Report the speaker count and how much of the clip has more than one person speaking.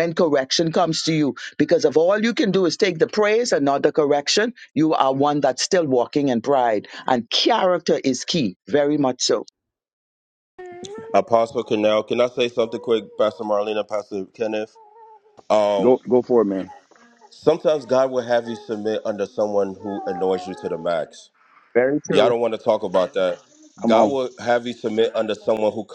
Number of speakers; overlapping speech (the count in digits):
3, about 2%